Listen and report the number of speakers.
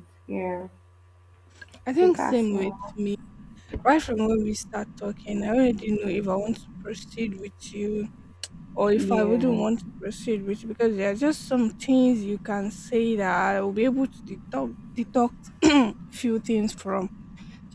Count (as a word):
two